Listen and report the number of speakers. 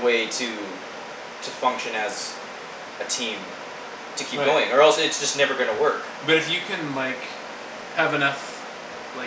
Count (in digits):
2